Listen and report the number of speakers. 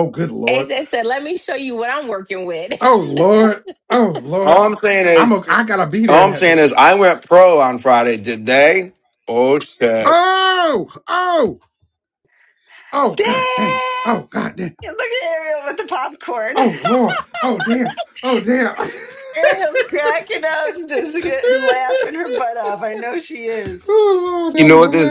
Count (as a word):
four